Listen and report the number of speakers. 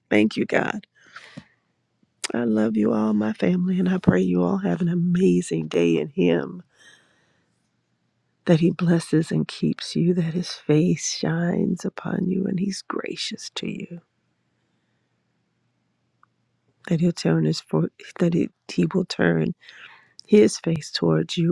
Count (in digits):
1